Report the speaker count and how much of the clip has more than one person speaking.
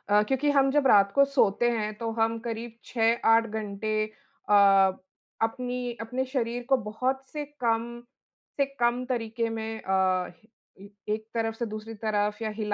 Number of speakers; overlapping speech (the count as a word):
one, no overlap